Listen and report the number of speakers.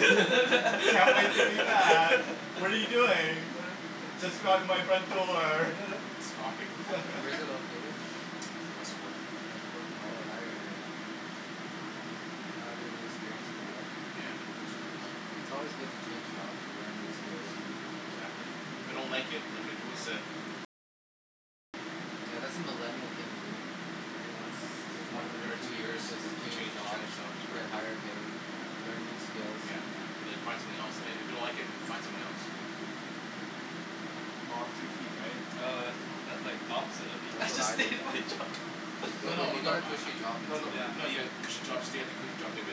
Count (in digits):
4